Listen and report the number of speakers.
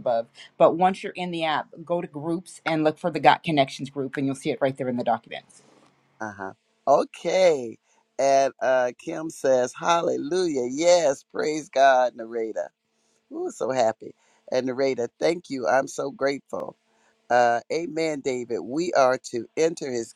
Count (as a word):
two